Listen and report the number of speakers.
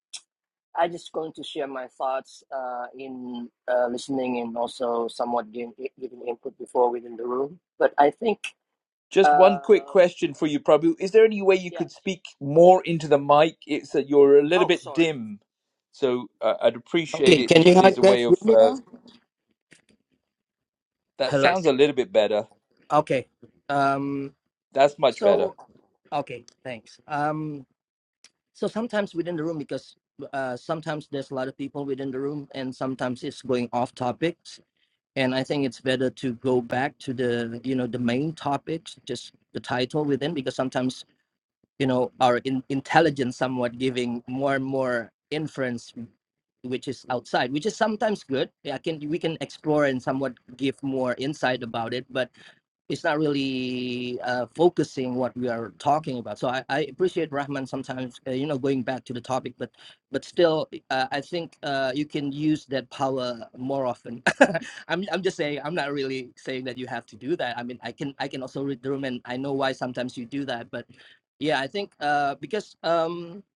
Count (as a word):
two